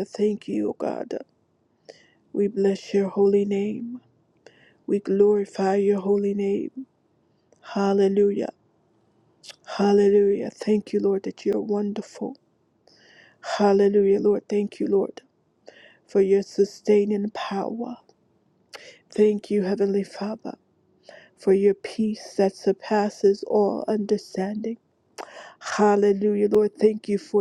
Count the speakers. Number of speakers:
1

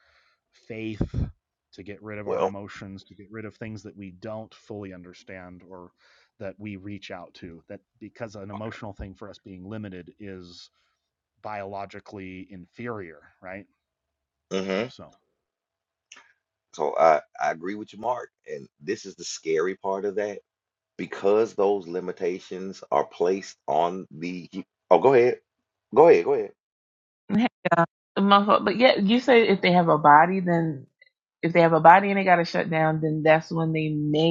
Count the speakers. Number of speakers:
3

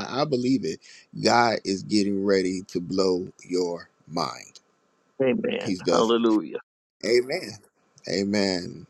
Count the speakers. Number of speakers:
2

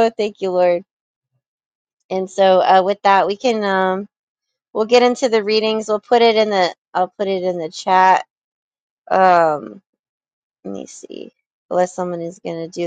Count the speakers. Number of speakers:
1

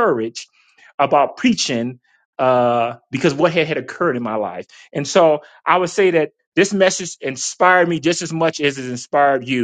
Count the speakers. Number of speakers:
1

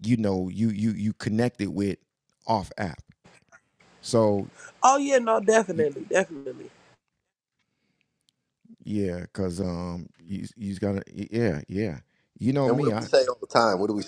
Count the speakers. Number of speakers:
3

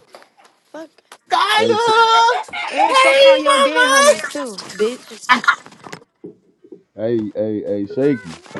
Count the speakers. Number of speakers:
3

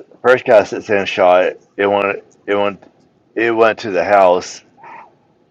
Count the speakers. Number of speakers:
1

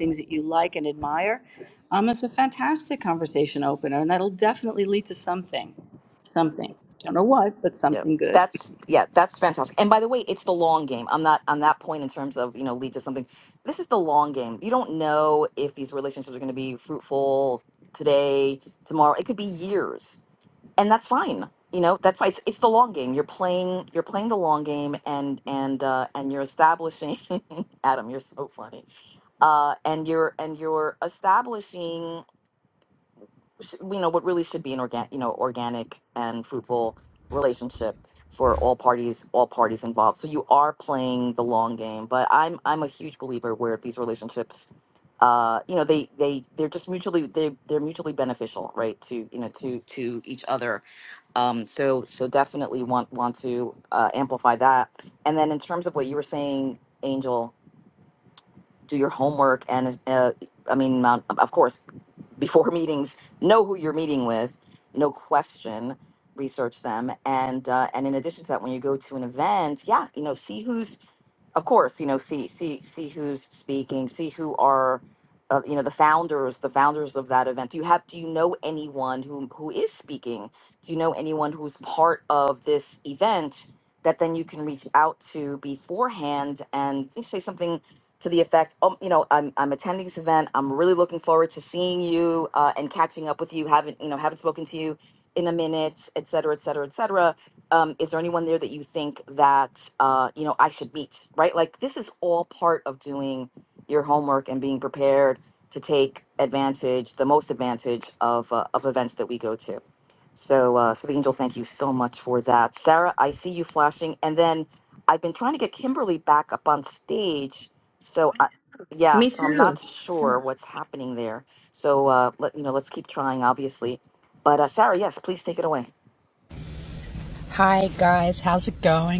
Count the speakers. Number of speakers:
3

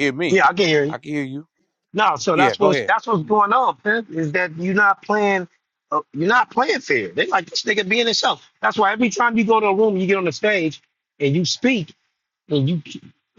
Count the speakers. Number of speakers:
2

